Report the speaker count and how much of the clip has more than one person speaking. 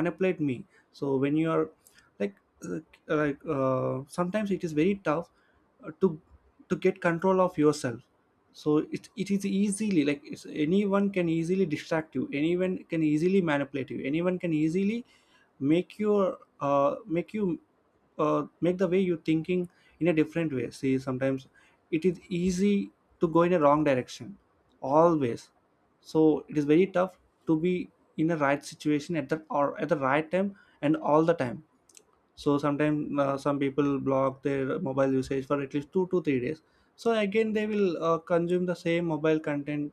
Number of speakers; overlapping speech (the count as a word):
one, no overlap